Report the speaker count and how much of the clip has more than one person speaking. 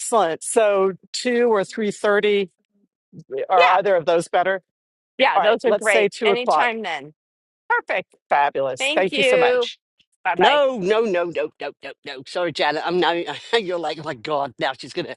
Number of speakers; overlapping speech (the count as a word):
three, about 18%